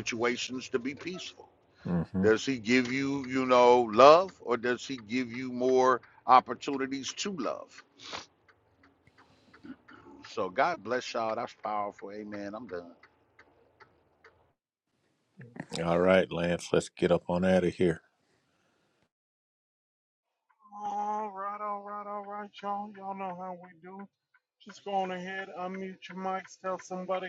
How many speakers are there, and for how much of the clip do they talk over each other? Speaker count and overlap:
3, under 1%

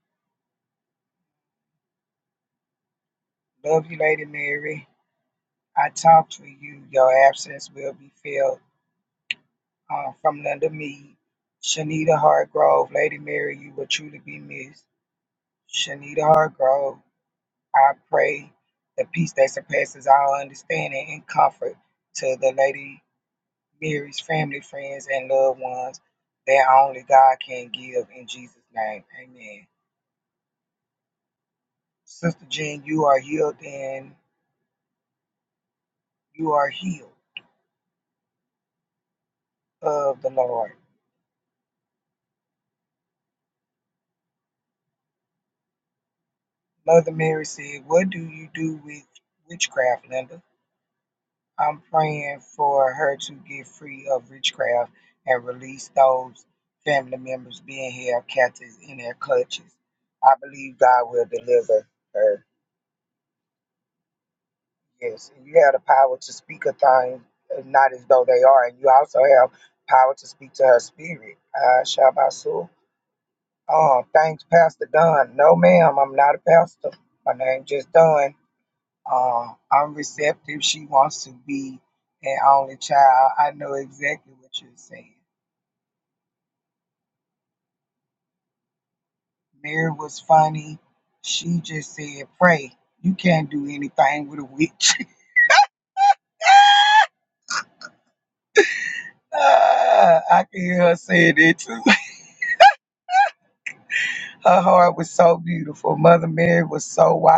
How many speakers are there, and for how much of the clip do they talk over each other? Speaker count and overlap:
1, no overlap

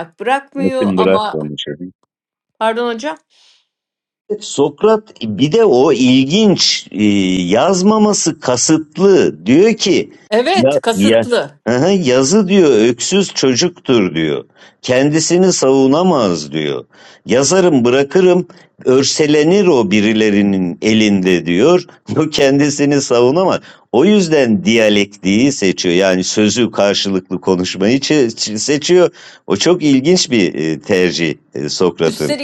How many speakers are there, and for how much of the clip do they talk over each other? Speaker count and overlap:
2, about 3%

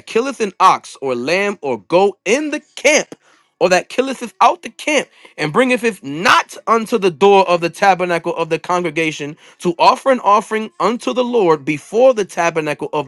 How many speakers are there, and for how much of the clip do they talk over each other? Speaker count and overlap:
1, no overlap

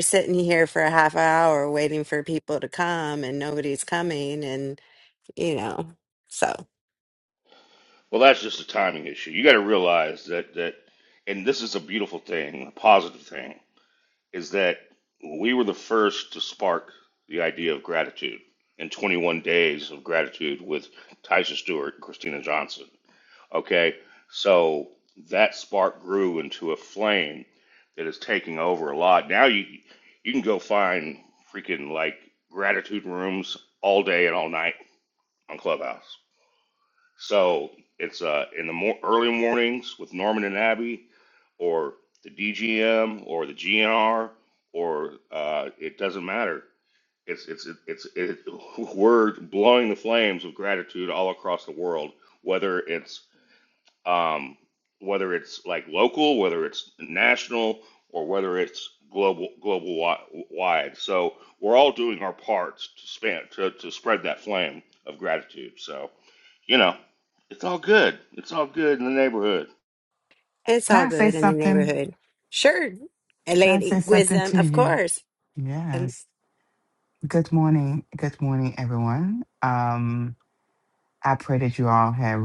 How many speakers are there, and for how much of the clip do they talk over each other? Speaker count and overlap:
3, about 3%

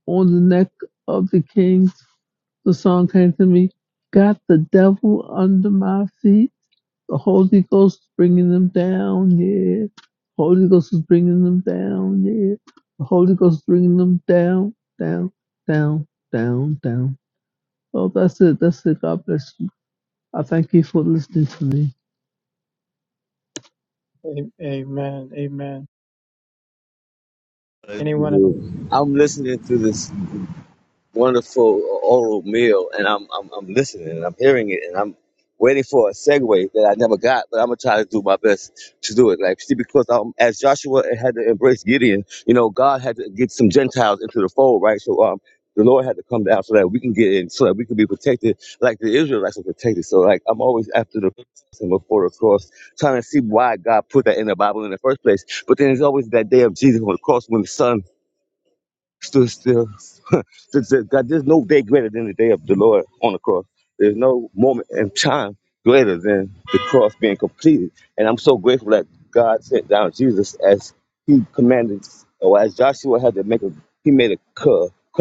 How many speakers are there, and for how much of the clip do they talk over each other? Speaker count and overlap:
3, no overlap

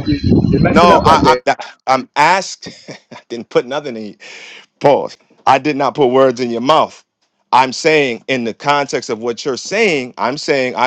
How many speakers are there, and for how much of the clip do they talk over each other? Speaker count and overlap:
2, about 7%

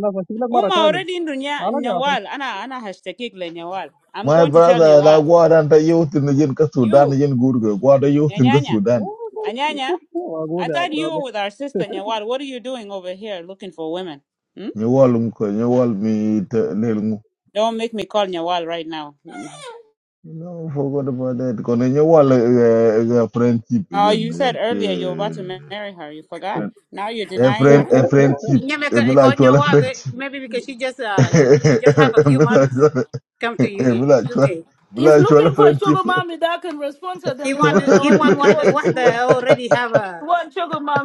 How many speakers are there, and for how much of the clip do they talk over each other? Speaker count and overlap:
5, about 25%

